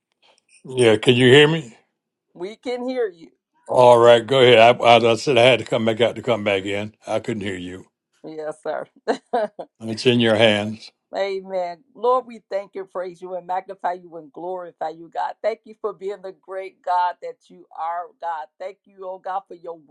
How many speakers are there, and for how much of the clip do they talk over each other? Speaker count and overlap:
2, no overlap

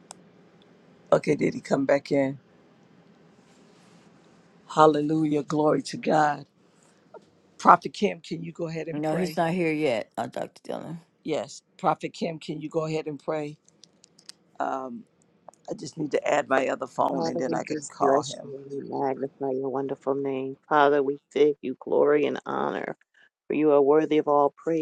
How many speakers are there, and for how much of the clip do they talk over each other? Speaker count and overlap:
3, about 7%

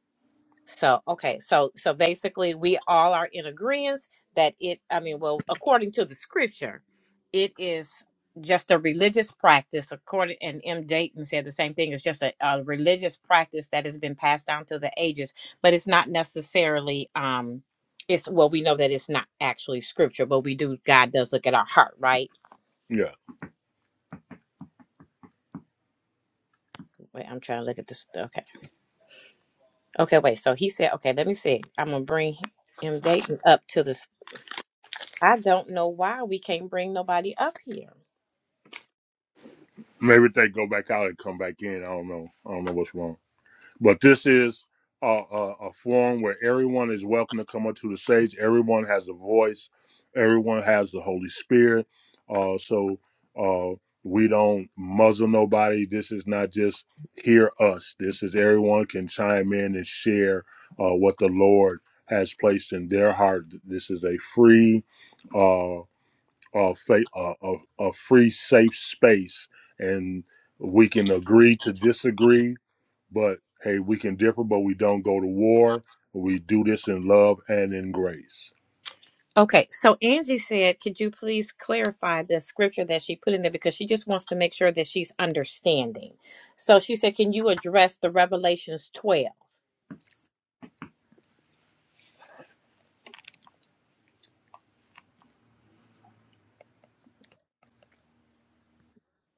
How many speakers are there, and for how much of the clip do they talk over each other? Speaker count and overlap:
2, no overlap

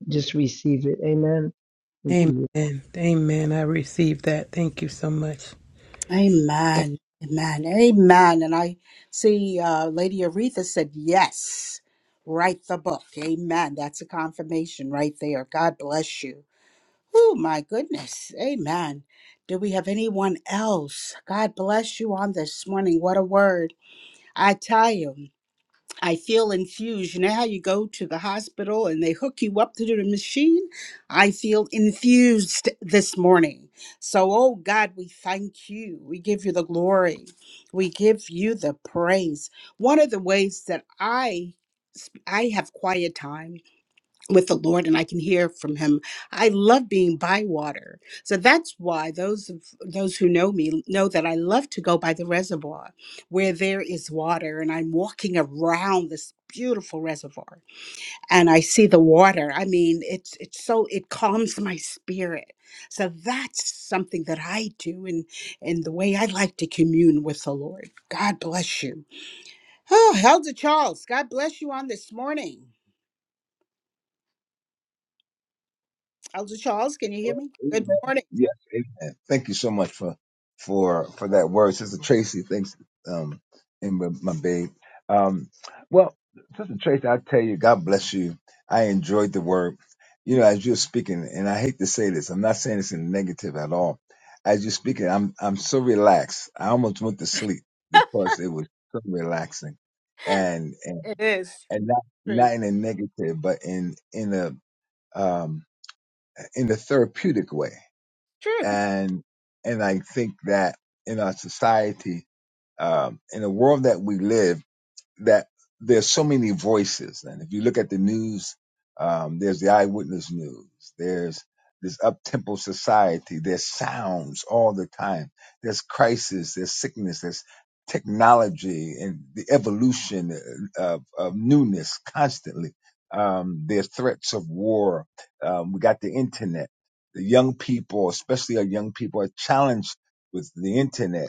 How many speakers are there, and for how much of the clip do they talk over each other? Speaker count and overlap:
4, about 1%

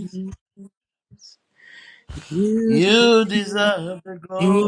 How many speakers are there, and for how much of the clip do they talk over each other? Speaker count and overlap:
2, about 15%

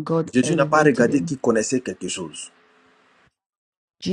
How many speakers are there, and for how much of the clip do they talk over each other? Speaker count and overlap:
2, about 25%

